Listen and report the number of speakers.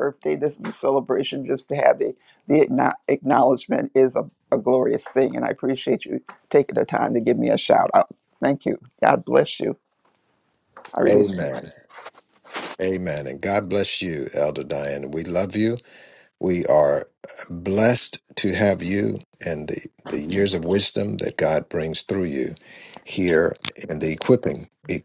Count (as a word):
two